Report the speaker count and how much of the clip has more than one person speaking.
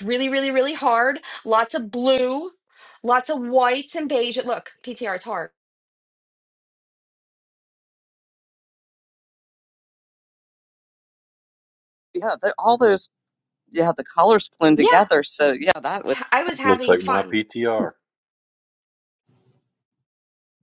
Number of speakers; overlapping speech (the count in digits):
3, about 5%